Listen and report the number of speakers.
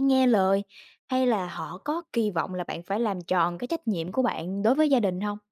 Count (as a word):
one